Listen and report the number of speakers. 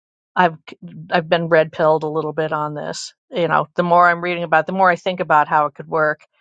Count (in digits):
1